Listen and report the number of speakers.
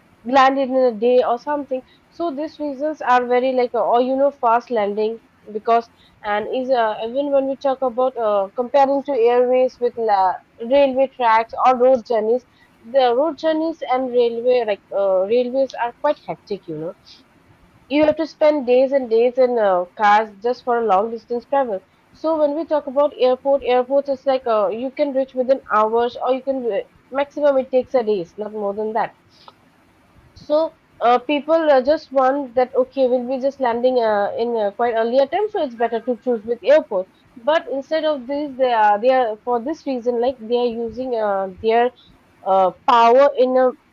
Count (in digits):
1